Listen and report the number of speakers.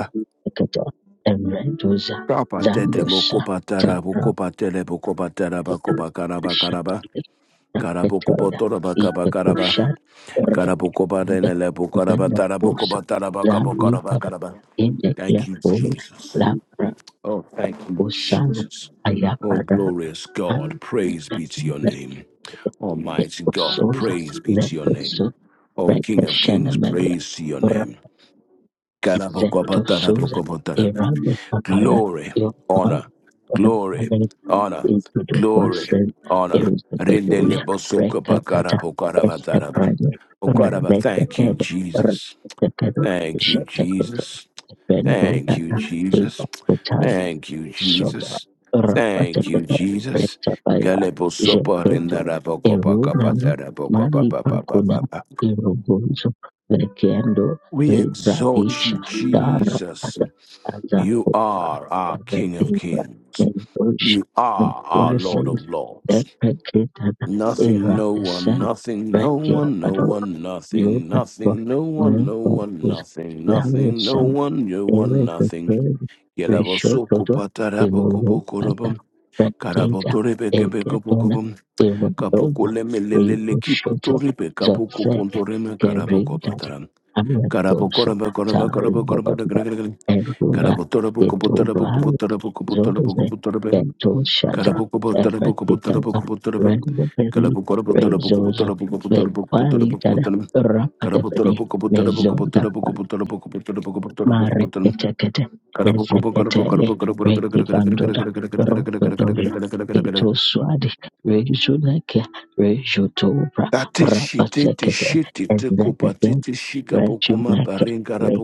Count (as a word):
two